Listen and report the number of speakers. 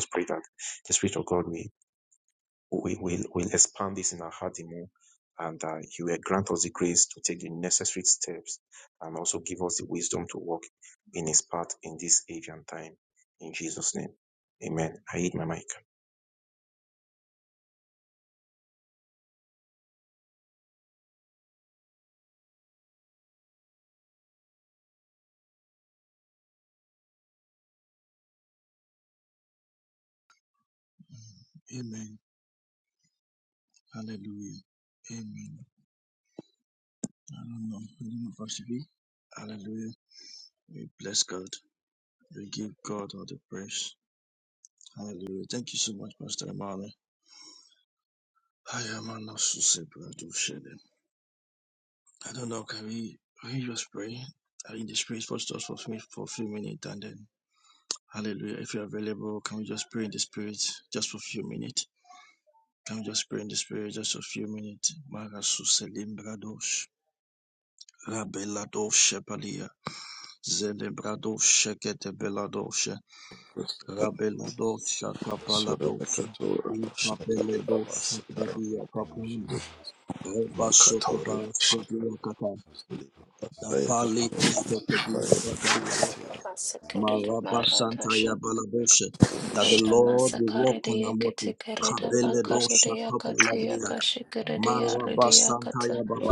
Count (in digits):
4